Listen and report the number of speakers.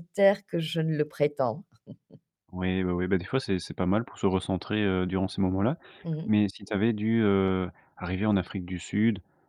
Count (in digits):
2